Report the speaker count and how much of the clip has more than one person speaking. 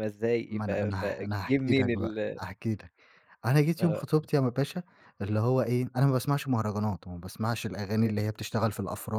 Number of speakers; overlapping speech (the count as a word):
two, about 24%